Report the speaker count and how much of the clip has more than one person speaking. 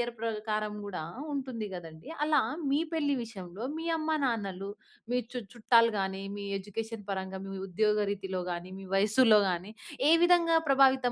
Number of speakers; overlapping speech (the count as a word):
one, no overlap